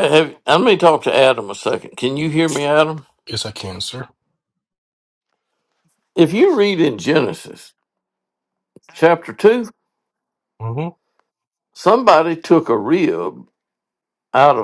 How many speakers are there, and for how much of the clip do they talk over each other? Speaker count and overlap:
2, no overlap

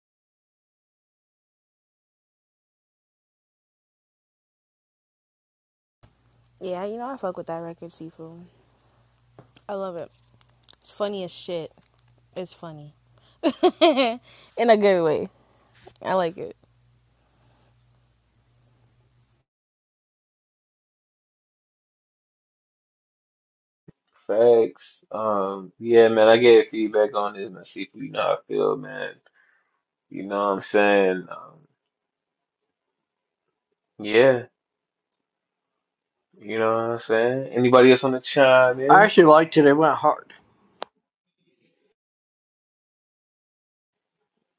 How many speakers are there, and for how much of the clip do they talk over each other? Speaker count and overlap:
3, under 1%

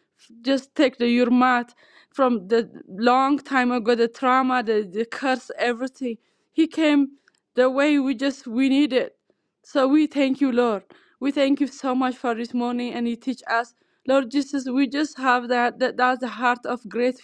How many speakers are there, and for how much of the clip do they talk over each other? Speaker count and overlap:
1, no overlap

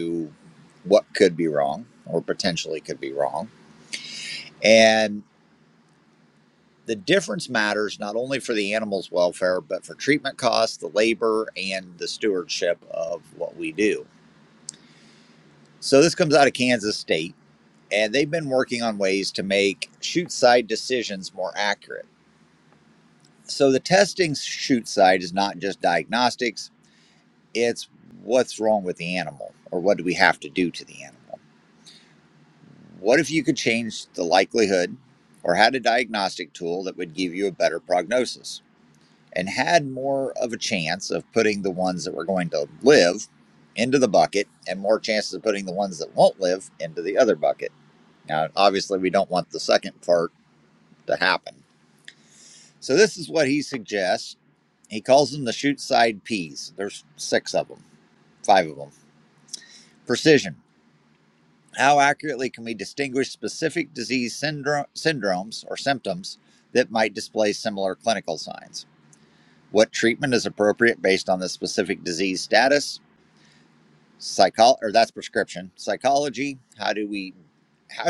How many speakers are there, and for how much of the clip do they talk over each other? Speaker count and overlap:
1, no overlap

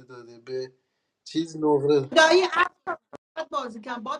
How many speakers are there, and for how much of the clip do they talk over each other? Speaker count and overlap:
2, no overlap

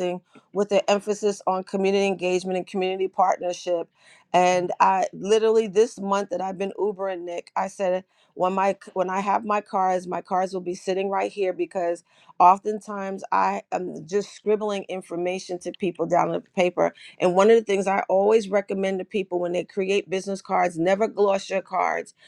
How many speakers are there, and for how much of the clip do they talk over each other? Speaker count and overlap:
1, no overlap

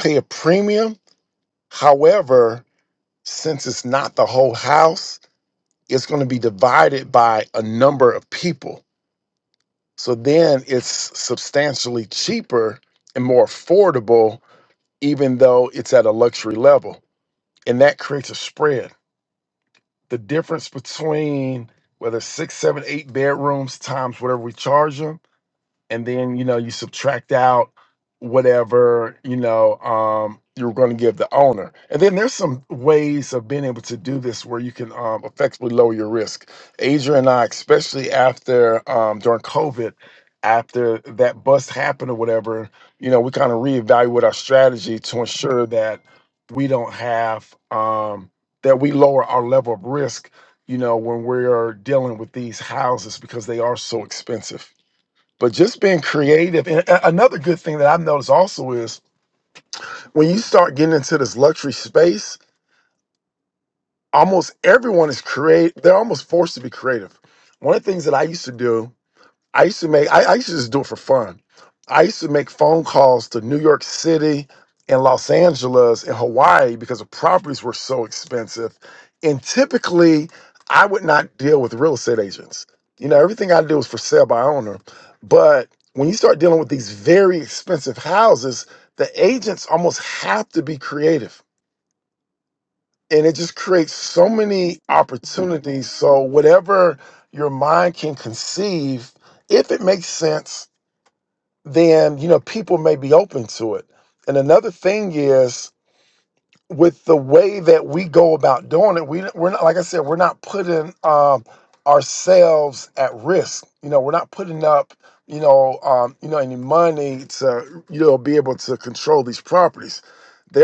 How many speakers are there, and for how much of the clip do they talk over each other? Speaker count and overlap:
1, no overlap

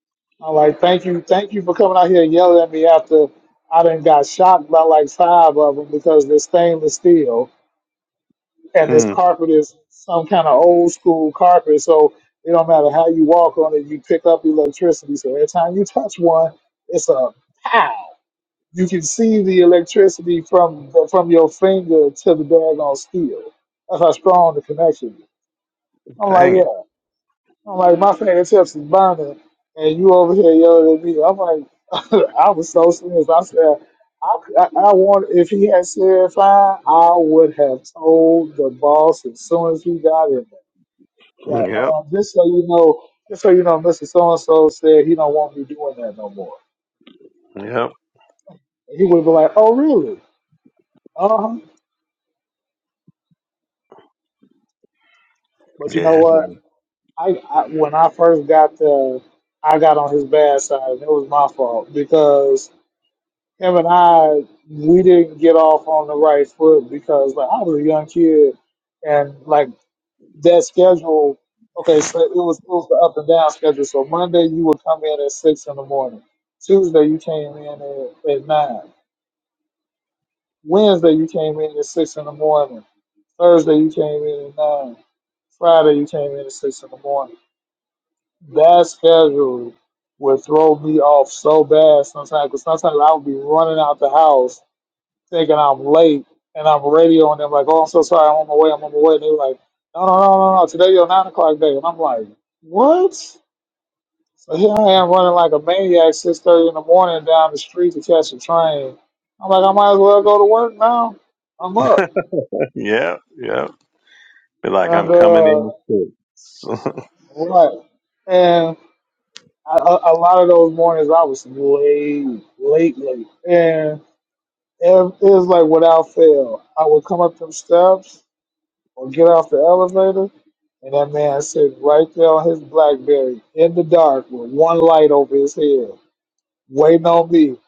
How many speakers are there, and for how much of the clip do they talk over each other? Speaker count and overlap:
2, about 2%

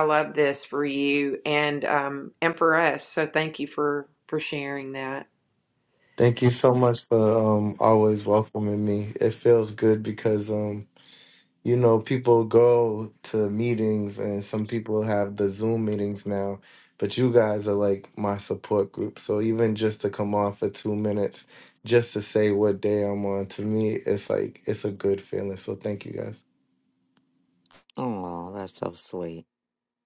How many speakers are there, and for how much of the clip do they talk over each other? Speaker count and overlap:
3, no overlap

